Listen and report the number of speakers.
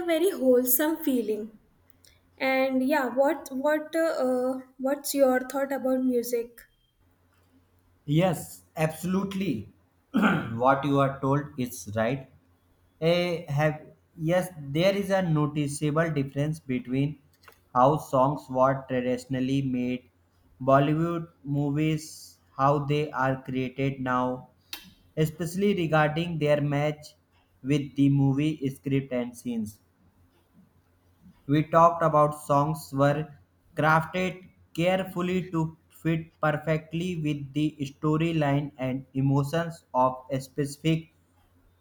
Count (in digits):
2